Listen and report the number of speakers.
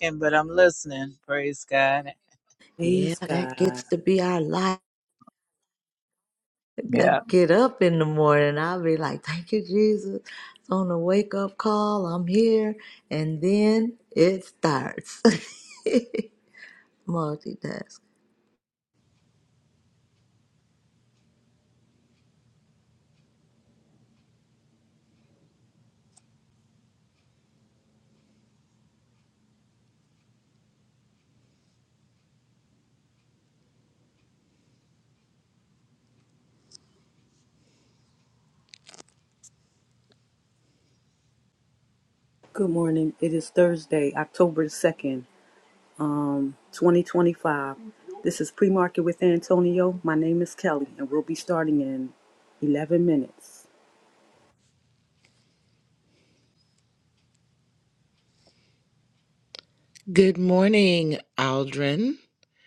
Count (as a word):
four